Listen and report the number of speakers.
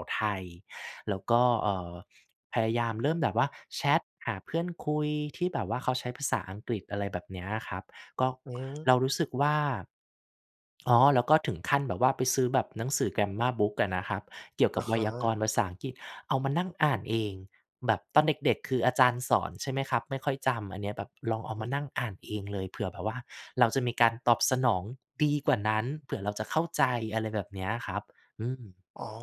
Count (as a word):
two